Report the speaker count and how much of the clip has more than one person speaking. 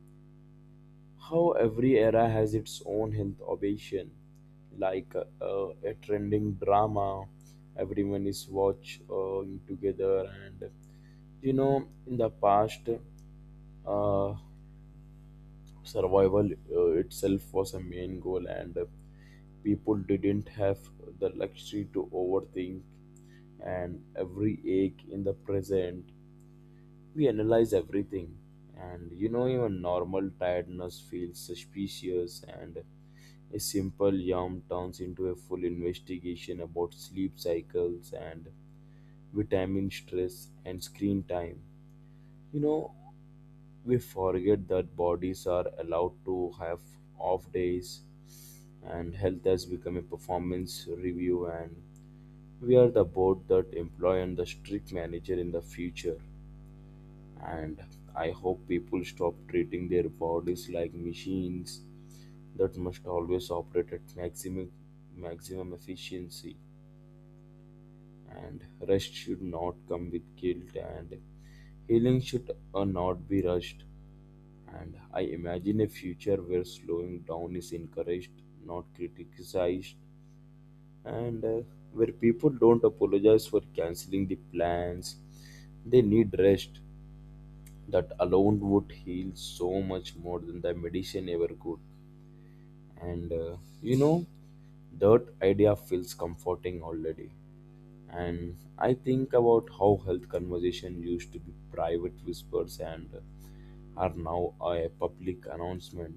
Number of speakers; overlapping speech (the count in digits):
1, no overlap